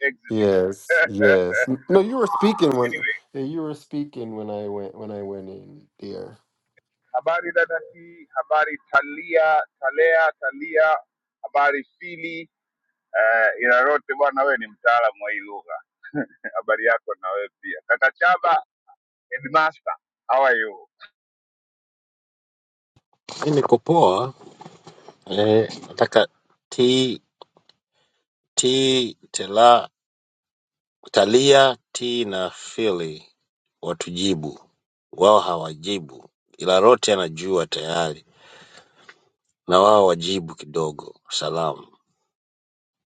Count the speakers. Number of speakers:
3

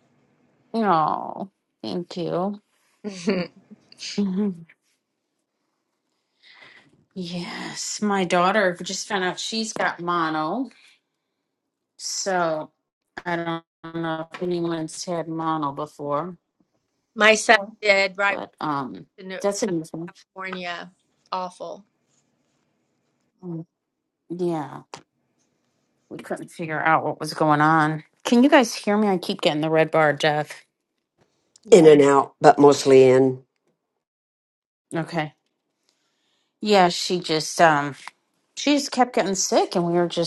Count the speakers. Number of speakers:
3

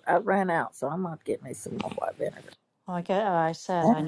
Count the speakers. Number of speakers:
2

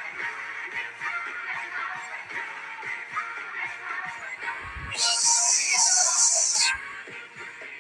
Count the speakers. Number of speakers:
0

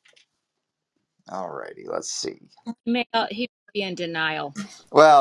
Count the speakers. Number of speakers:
2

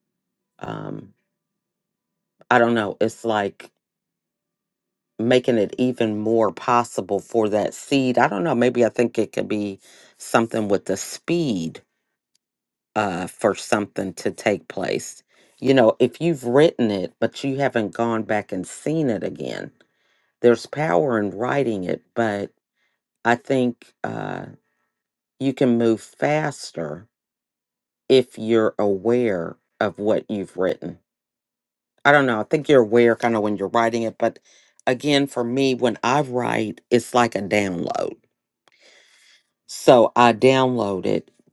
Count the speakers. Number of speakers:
1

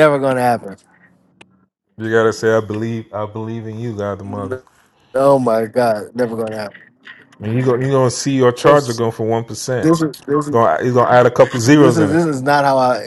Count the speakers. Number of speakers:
2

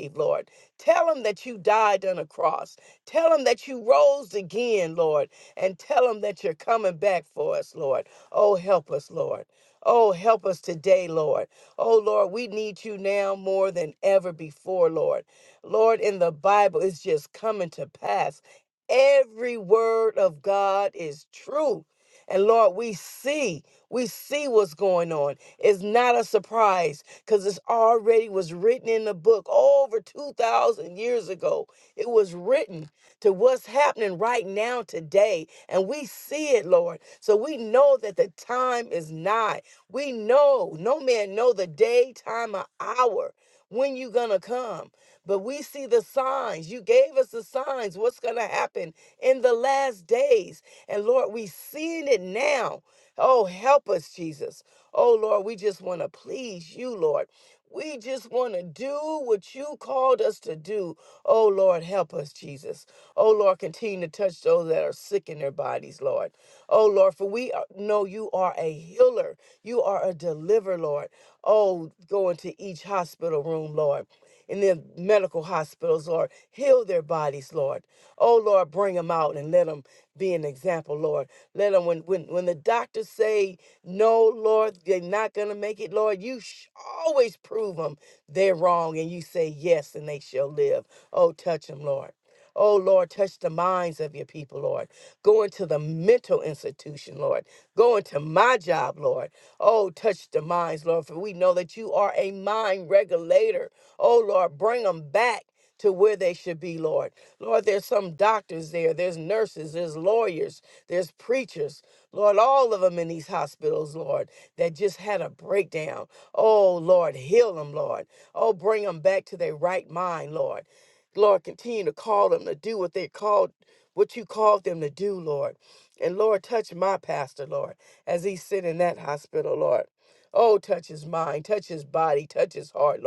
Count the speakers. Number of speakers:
1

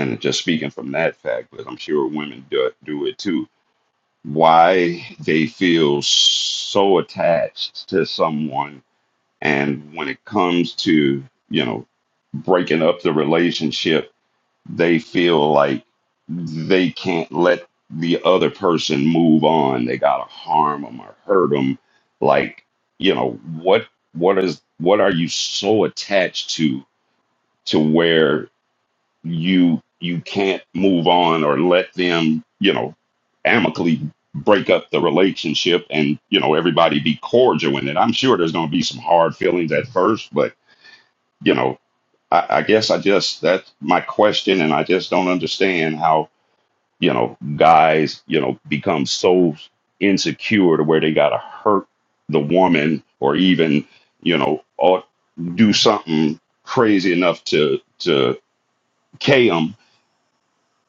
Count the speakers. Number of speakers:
1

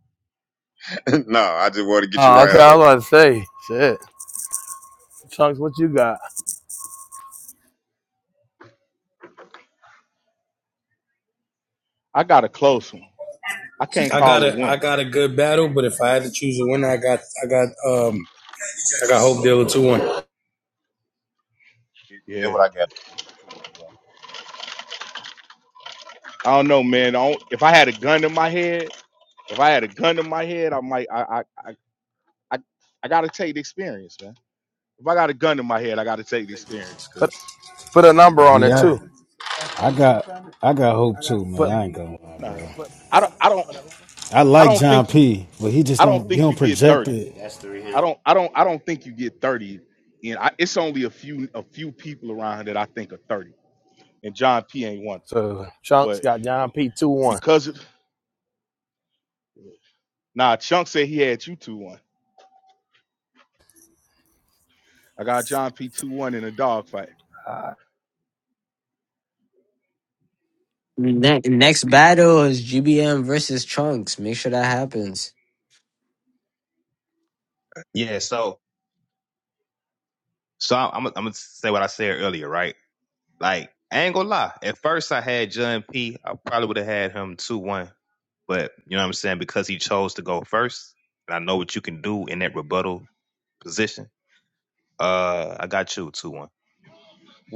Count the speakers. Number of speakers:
7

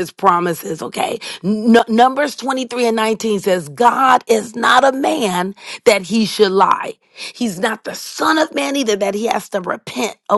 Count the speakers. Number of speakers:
1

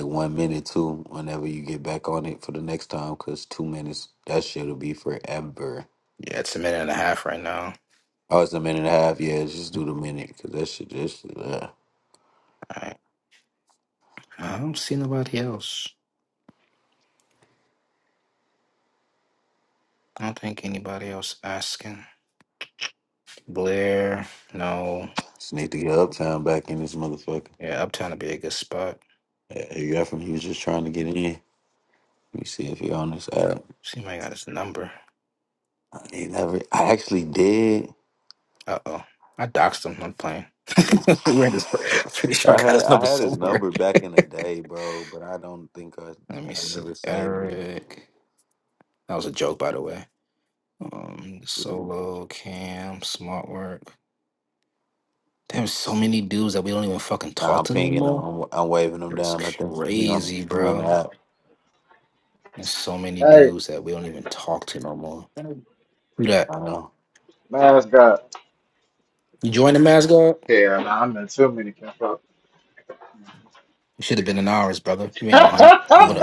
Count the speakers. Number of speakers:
3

